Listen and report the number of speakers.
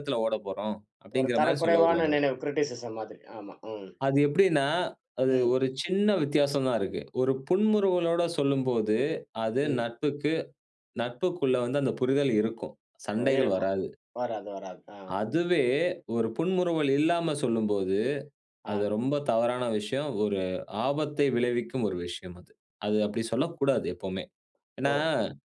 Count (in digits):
2